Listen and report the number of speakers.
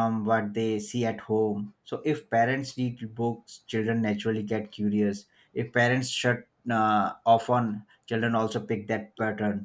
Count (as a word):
one